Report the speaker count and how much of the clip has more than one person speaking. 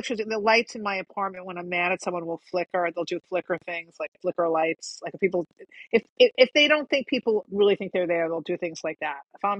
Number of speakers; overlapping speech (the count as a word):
one, no overlap